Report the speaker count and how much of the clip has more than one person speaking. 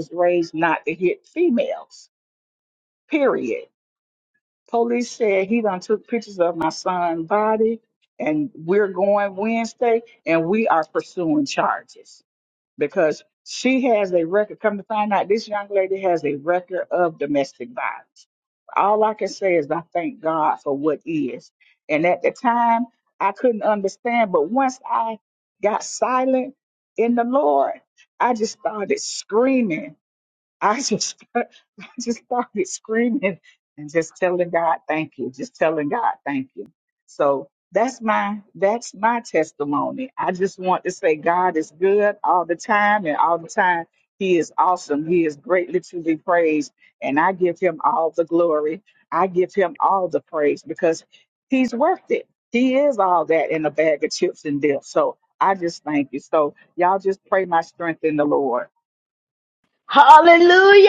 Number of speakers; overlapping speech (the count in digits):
2, no overlap